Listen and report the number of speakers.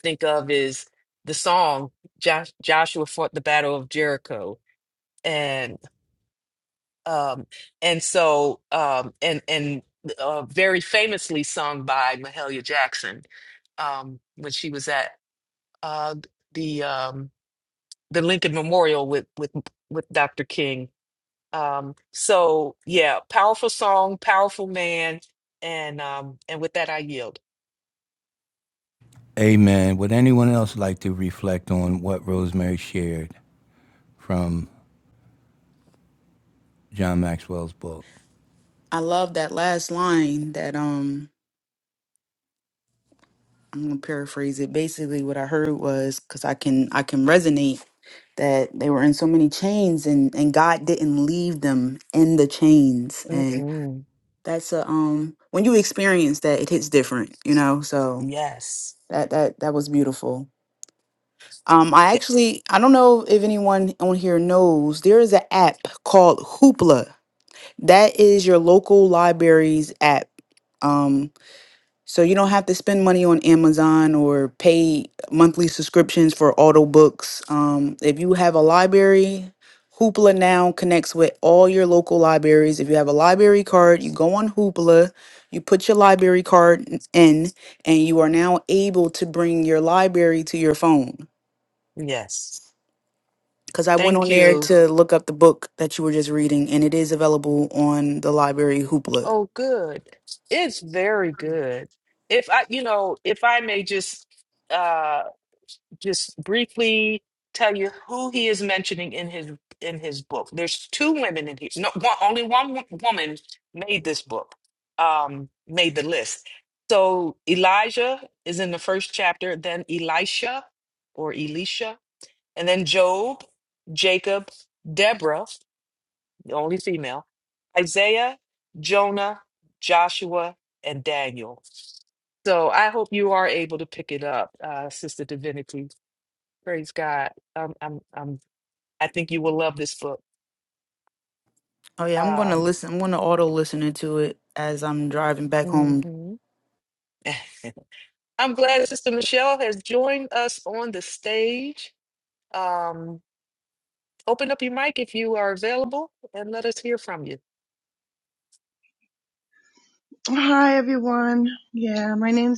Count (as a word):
four